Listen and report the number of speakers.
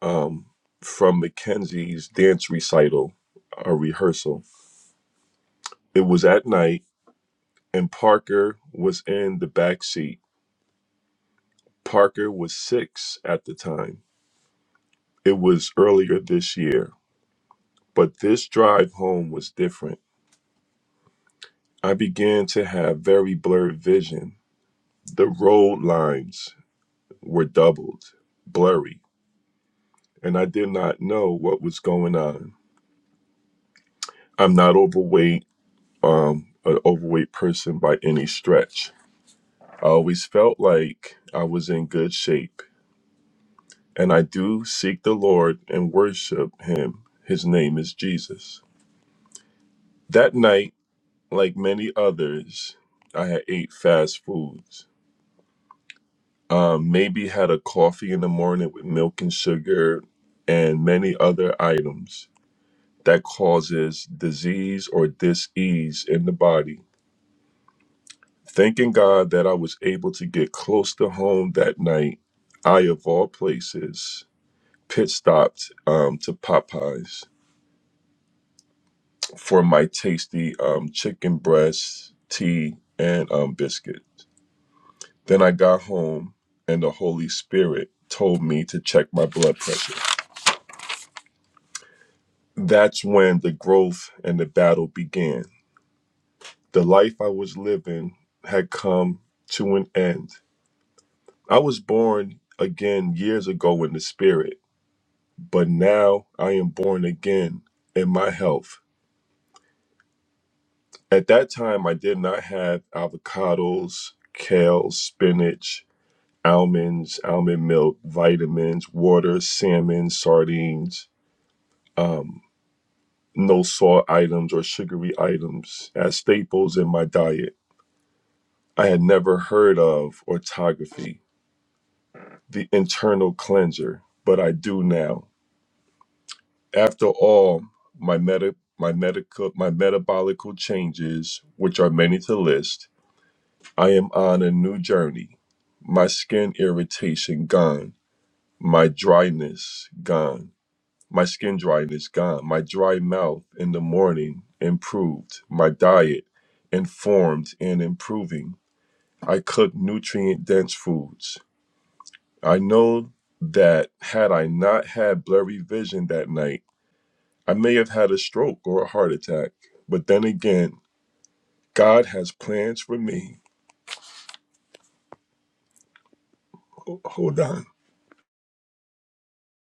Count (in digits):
1